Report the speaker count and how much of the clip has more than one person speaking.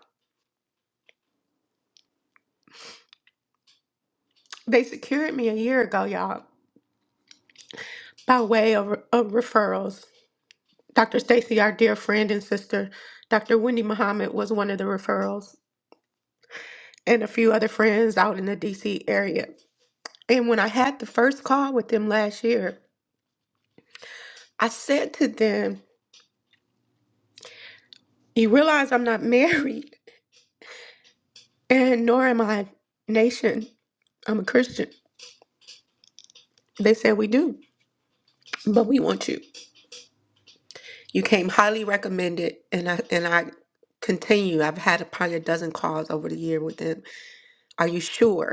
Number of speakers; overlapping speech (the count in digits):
1, no overlap